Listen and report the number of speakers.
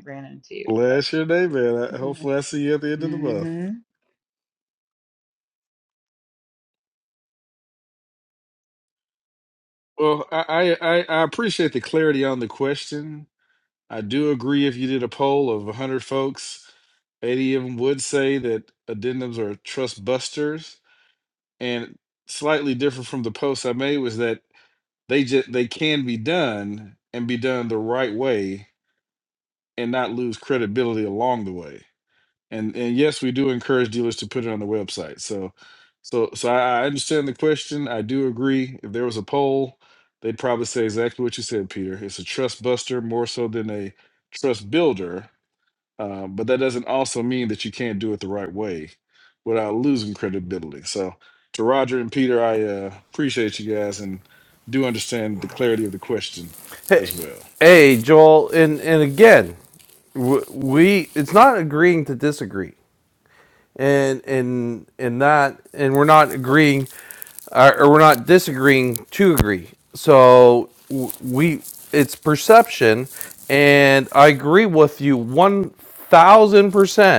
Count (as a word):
three